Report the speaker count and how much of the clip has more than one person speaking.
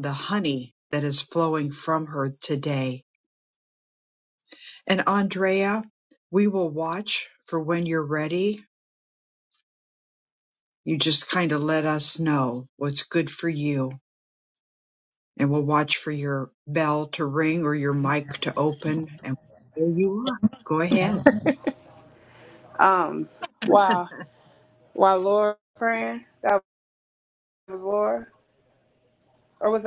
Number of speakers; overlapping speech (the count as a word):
two, no overlap